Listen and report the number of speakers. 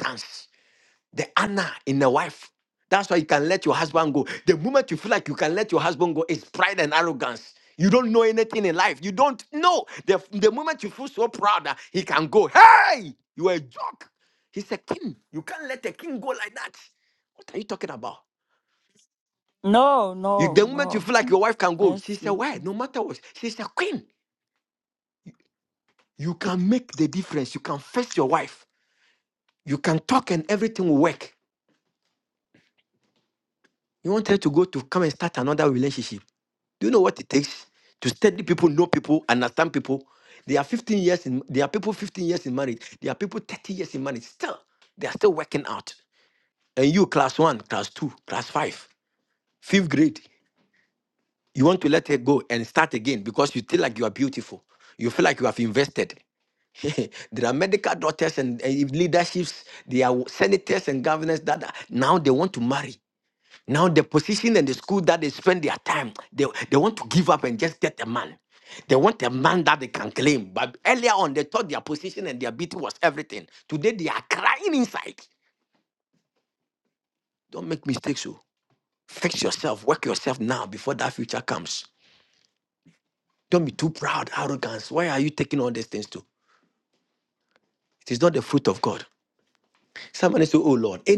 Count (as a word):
two